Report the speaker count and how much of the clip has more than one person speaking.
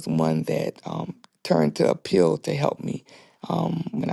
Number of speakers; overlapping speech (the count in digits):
1, no overlap